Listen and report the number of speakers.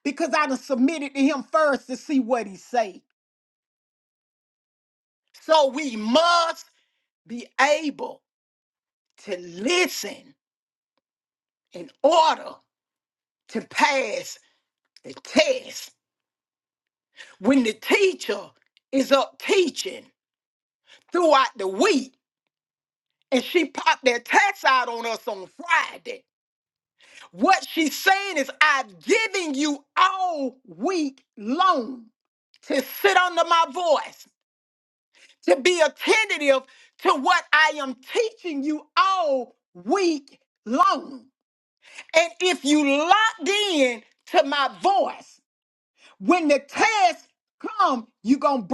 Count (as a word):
one